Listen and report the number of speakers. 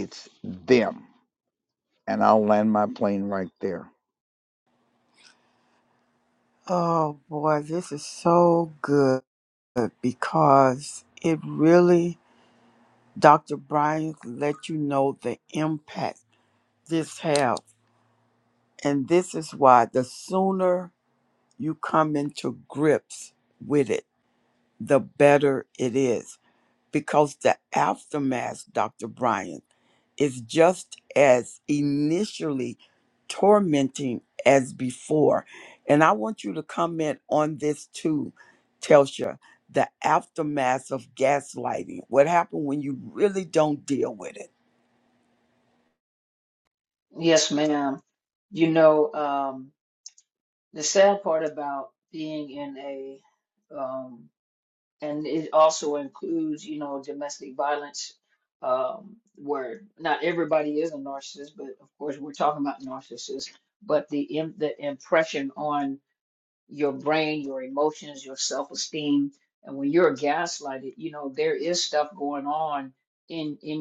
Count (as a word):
three